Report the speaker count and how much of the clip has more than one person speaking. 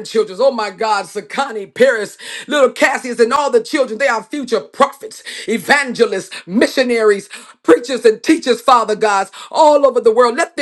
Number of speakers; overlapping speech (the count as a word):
one, no overlap